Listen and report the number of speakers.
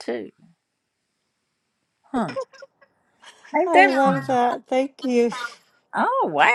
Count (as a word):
two